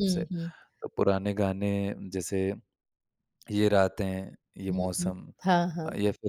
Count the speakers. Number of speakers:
two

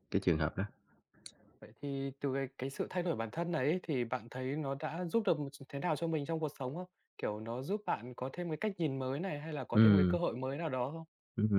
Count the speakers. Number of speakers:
two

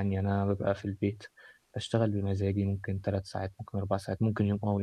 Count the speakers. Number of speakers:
one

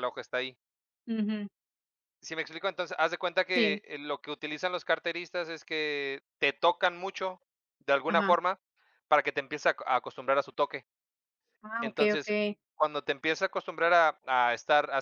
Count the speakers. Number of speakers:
two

